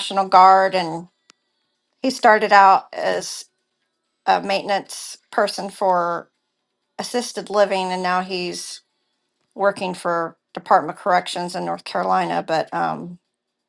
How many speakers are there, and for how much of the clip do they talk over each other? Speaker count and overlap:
one, no overlap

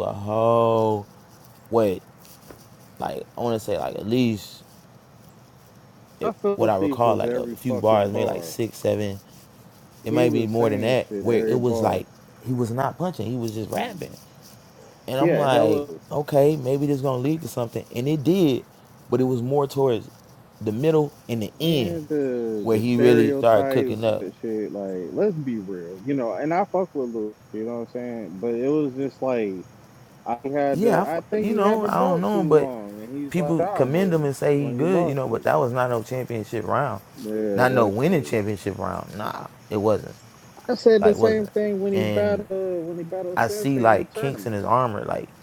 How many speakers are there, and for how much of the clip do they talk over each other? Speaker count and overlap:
two, about 31%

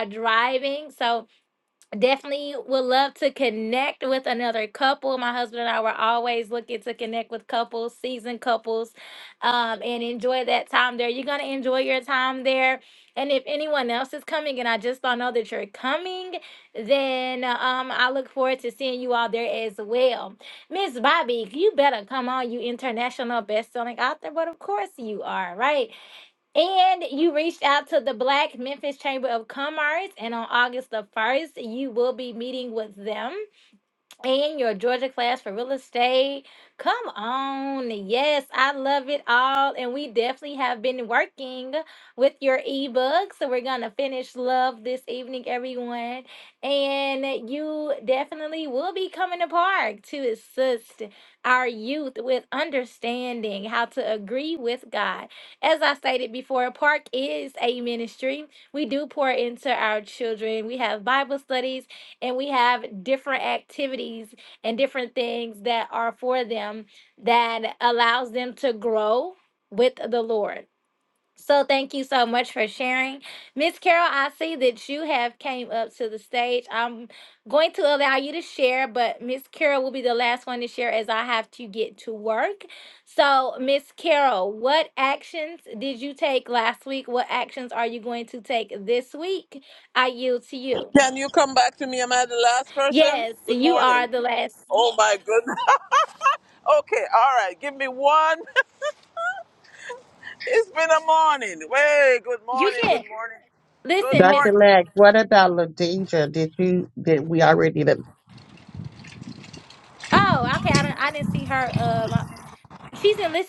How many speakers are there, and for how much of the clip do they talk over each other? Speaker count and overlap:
three, about 2%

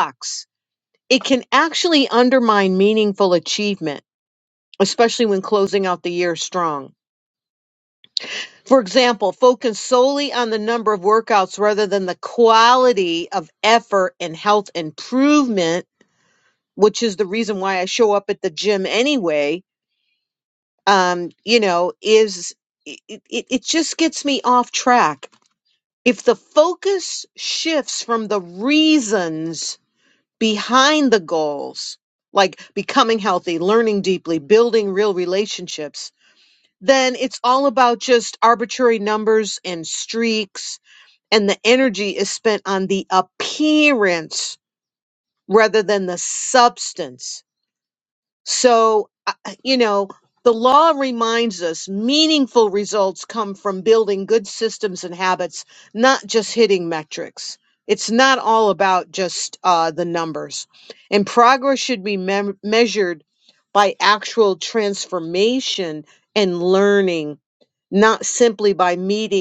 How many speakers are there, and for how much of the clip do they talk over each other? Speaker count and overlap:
one, no overlap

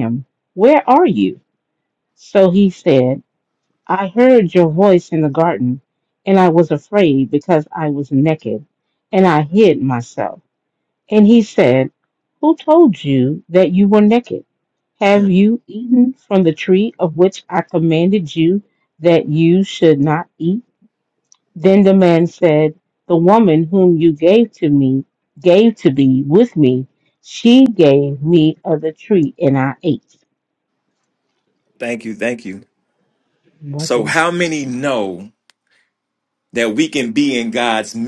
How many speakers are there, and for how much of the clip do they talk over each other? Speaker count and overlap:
two, about 1%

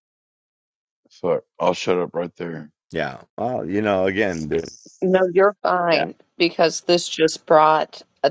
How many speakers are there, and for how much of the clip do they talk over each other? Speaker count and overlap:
three, about 2%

